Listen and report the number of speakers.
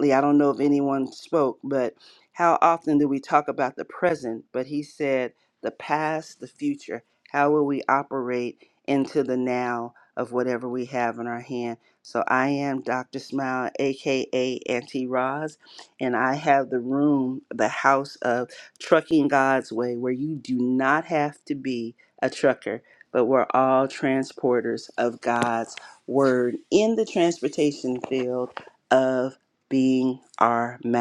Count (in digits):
1